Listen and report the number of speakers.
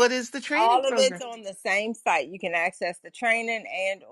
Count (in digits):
2